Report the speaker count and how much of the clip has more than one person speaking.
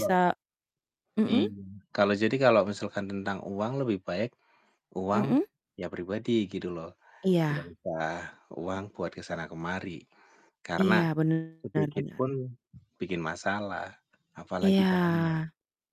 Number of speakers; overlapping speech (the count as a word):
two, about 11%